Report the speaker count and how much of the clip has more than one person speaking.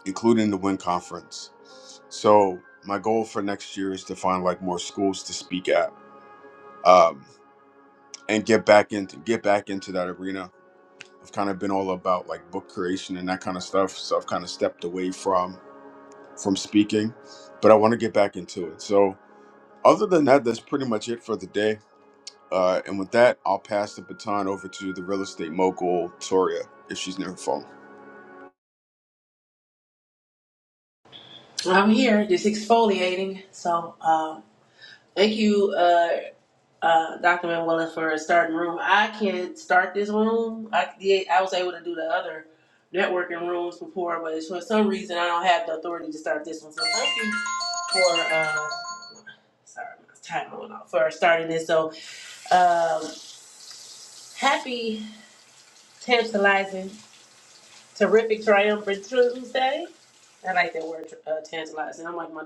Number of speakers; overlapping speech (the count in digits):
2, no overlap